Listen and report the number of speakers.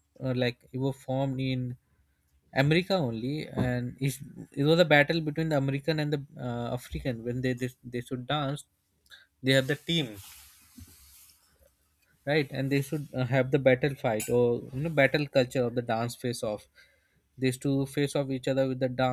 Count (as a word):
one